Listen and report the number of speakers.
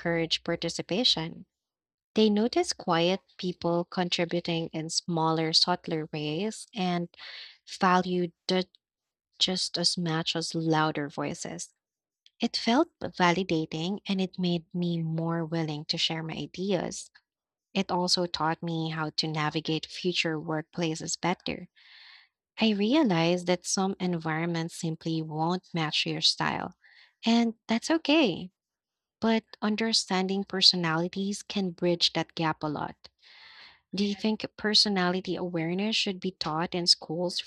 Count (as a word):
one